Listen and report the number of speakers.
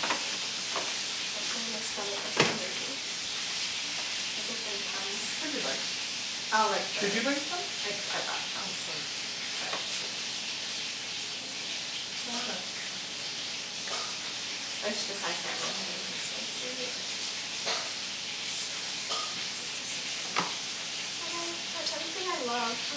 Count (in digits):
2